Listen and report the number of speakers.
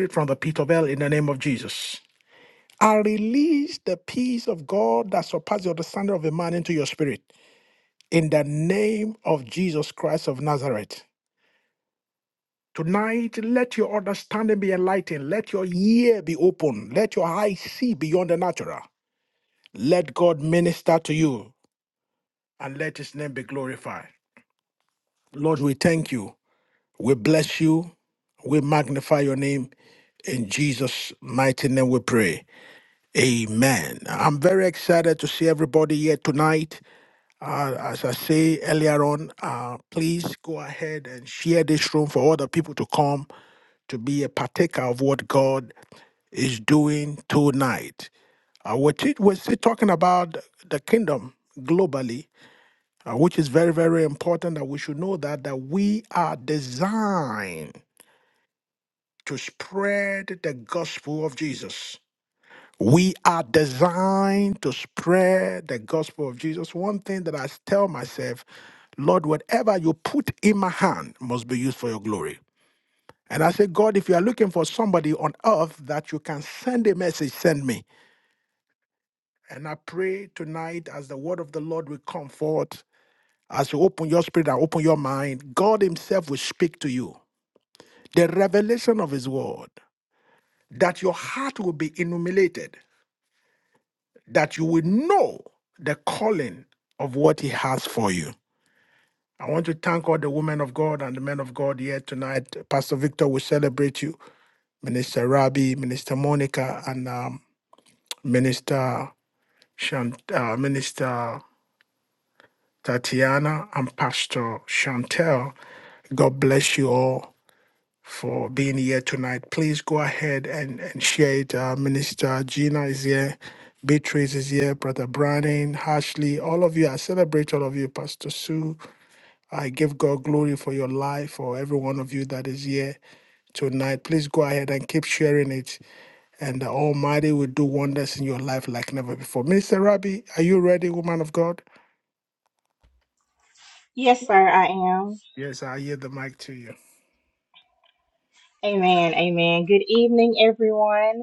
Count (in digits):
2